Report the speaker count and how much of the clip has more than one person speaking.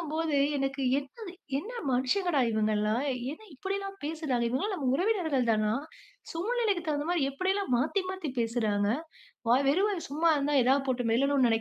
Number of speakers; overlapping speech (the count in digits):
1, no overlap